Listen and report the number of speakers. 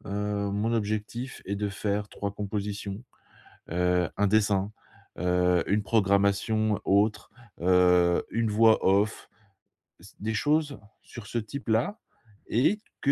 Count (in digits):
1